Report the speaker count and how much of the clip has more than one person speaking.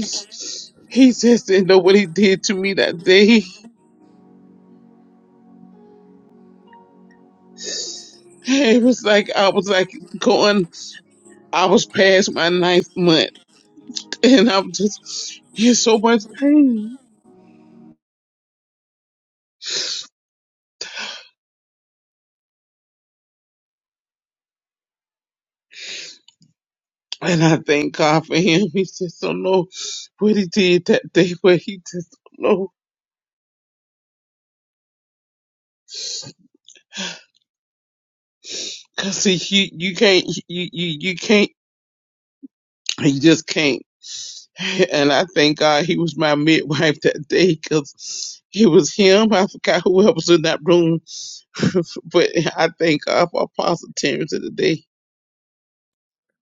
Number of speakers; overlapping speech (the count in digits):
1, no overlap